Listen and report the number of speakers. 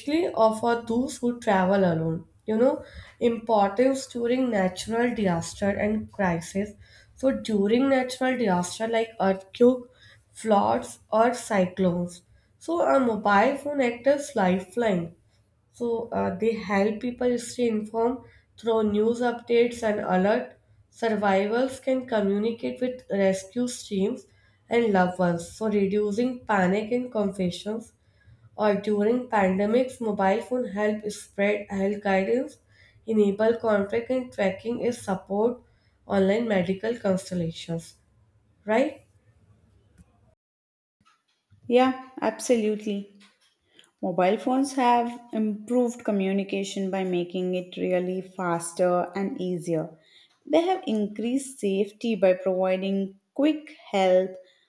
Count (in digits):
2